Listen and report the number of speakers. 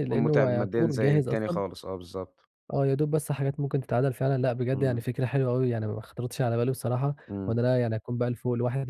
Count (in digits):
2